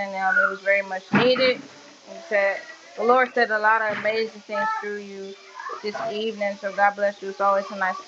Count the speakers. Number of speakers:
one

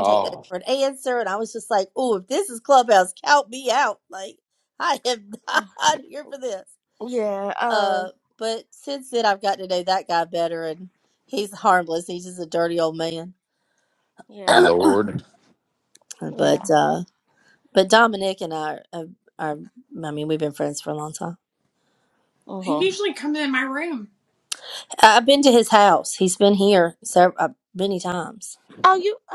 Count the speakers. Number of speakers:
four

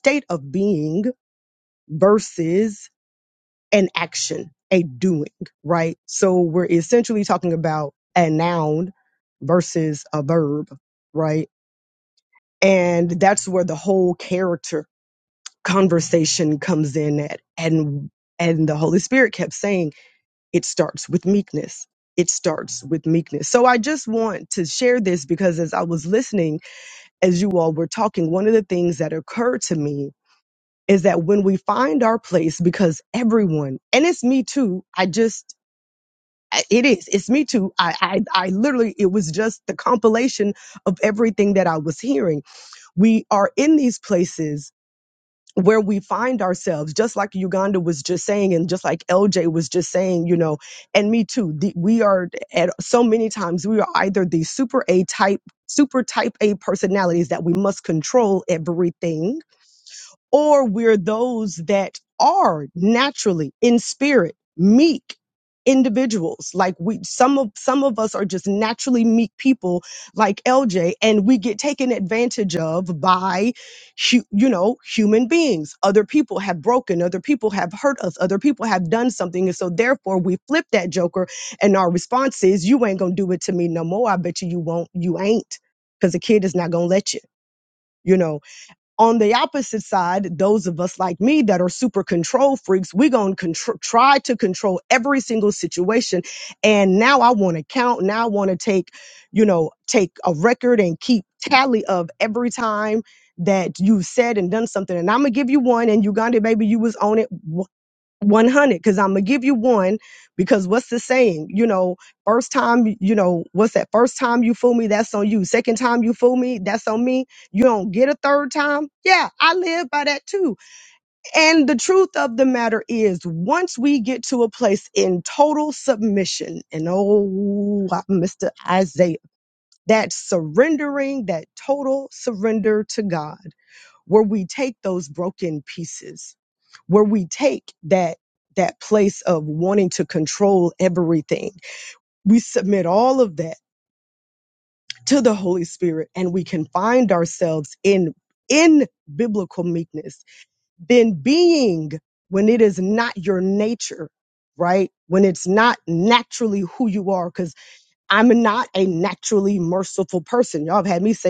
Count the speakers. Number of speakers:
one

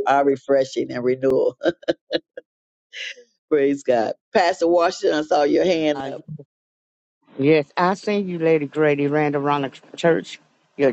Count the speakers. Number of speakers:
two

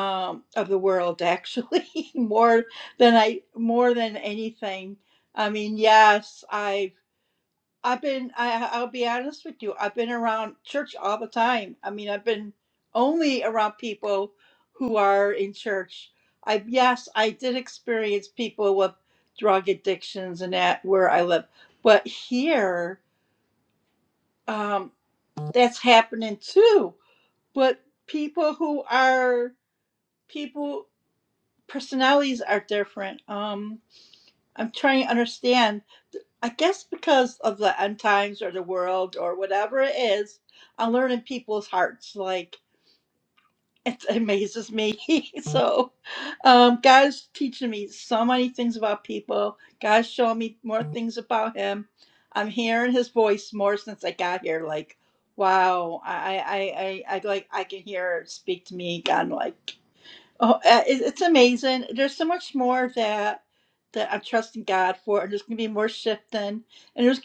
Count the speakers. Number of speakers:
one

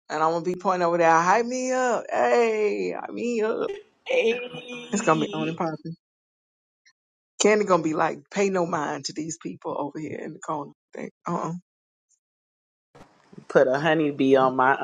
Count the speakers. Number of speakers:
two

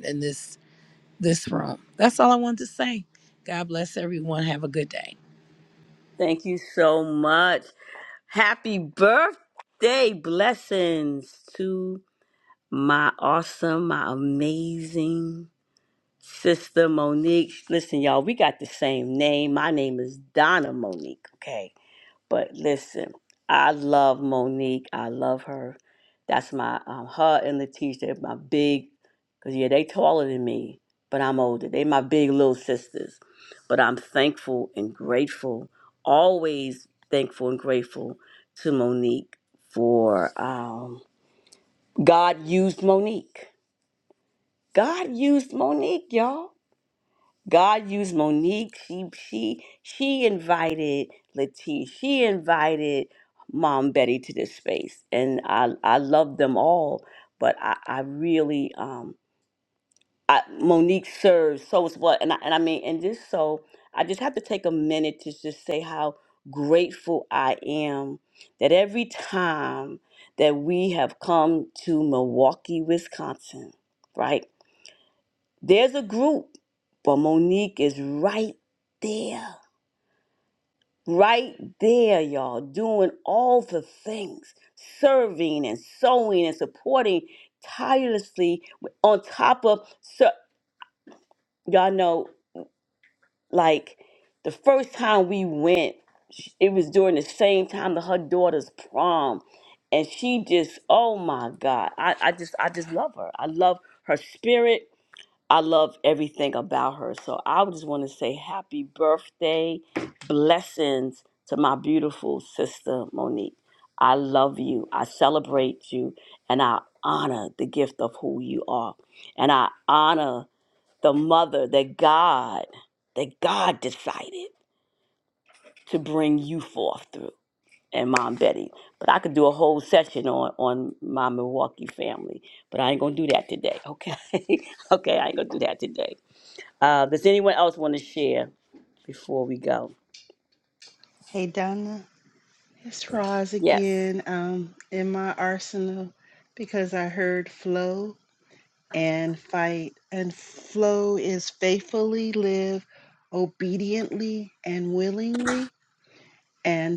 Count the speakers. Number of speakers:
three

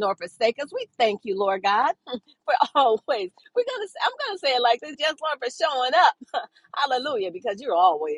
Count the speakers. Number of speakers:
one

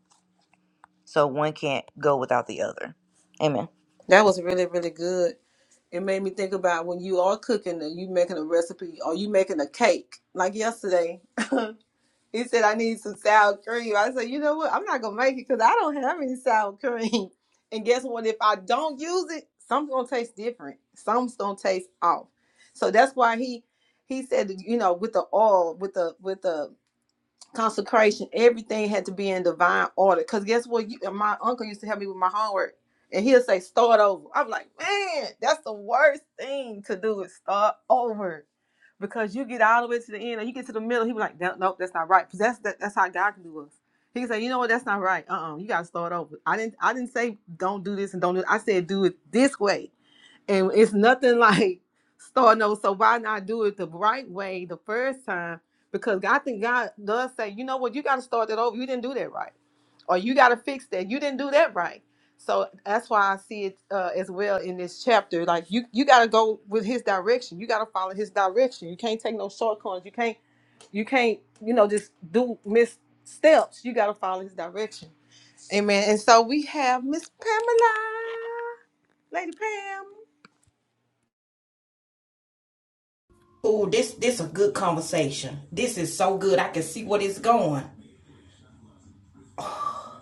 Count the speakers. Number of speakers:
three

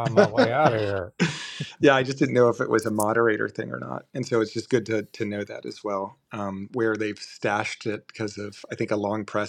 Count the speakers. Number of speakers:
two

